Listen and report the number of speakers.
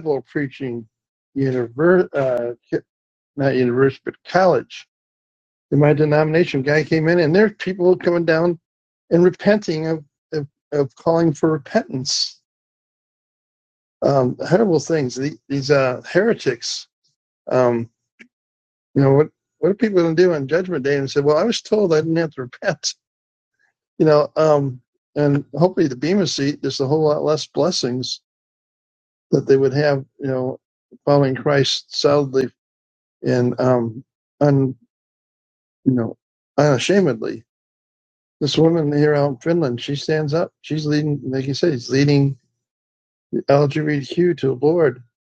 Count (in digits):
1